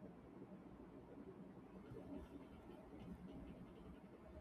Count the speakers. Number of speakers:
0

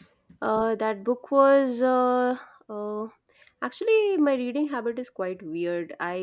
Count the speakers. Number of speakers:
1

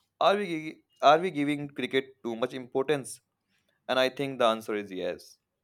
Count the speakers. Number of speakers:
1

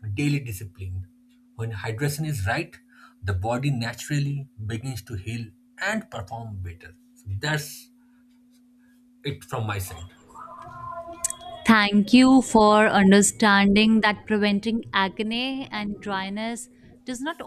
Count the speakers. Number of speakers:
2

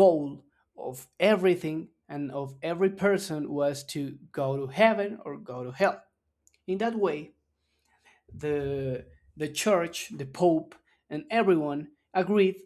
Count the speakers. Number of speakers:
1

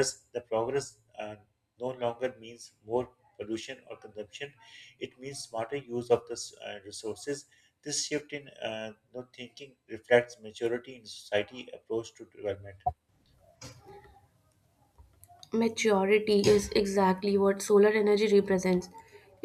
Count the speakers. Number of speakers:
2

